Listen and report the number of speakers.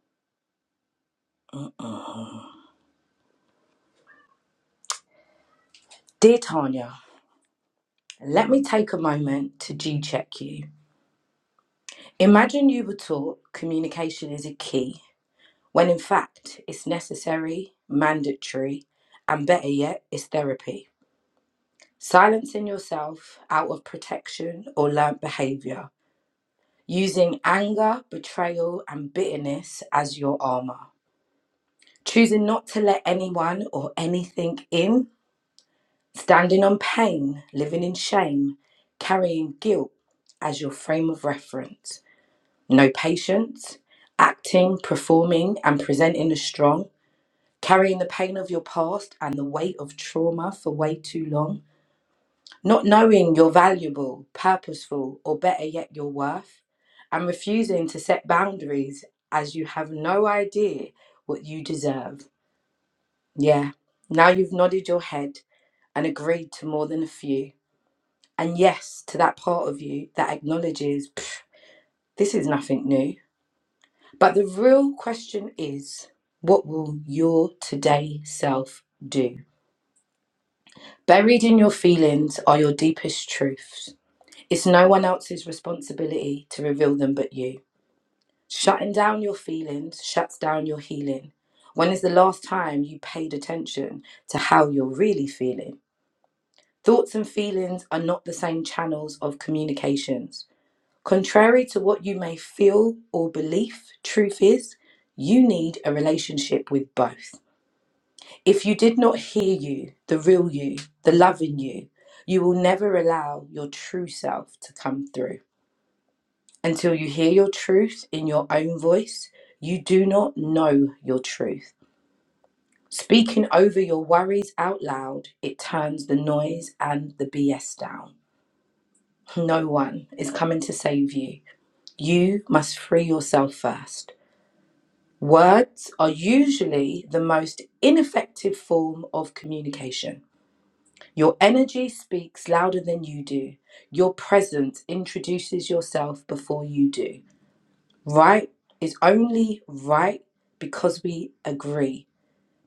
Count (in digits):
1